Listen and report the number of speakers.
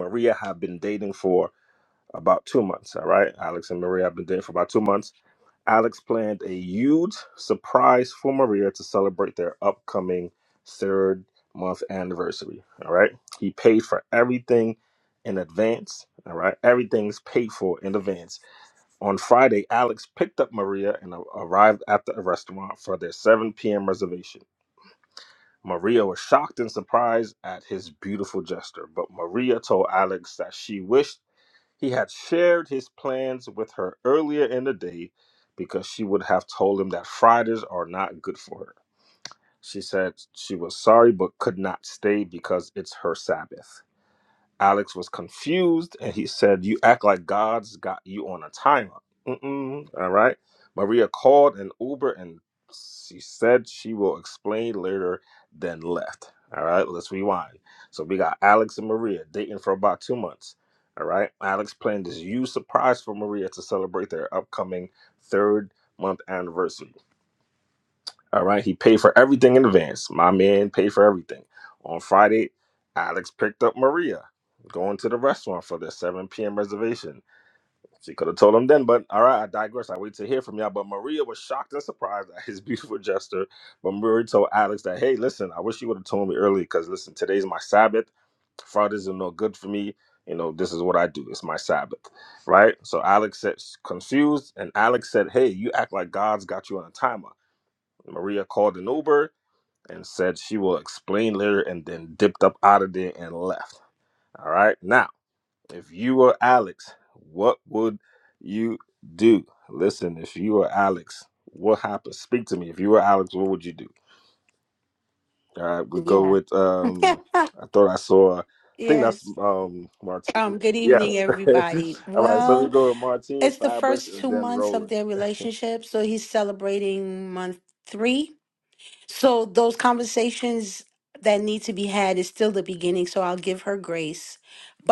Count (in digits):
2